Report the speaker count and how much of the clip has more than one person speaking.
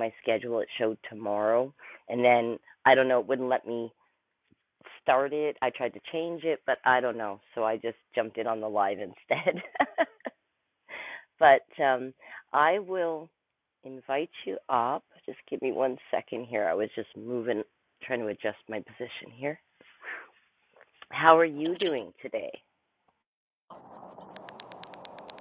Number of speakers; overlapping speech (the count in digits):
1, no overlap